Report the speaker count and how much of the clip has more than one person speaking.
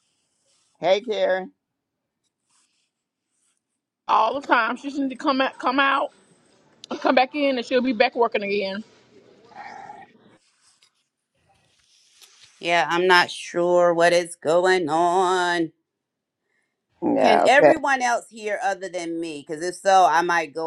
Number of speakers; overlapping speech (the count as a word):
three, about 3%